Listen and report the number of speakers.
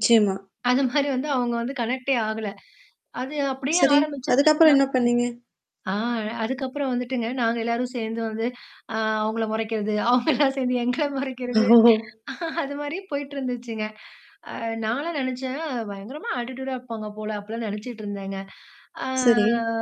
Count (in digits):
2